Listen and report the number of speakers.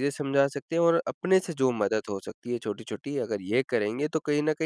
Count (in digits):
1